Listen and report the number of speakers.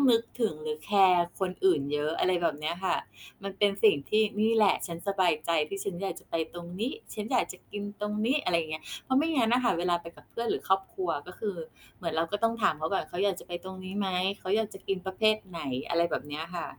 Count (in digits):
1